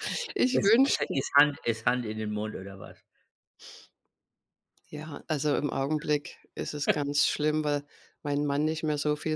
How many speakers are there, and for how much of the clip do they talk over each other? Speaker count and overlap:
two, about 4%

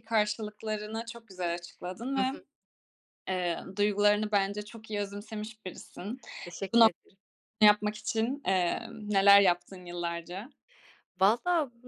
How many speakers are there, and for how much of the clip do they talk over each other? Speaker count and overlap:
two, about 2%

